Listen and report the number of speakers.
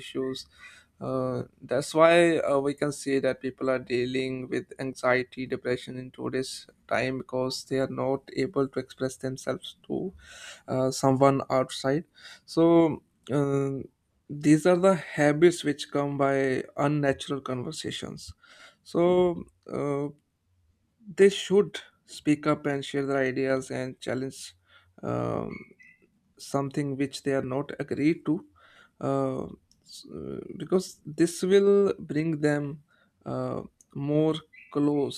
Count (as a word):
one